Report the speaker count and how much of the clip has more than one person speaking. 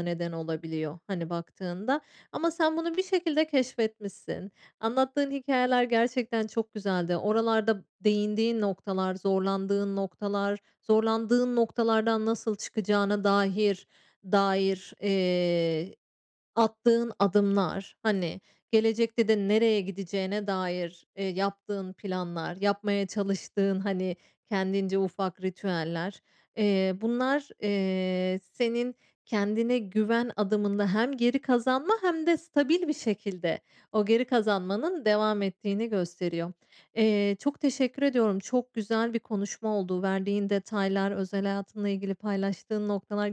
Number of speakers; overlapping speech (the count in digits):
1, no overlap